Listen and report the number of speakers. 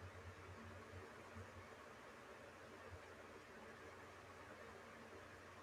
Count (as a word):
zero